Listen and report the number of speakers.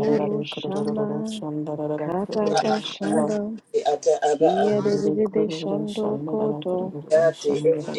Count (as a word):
three